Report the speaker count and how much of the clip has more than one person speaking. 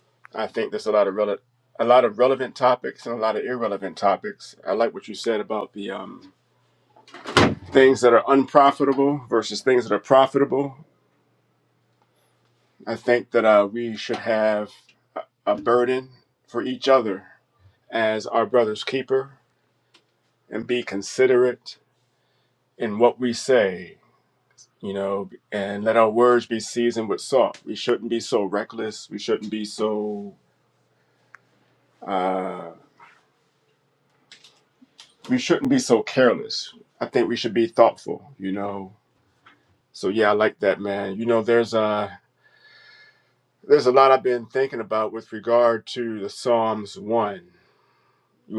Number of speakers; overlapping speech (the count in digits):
1, no overlap